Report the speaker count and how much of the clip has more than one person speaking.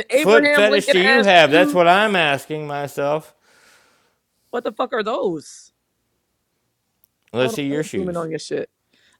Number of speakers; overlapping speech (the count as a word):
two, about 26%